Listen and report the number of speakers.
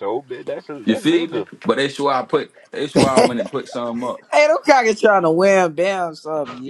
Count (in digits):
3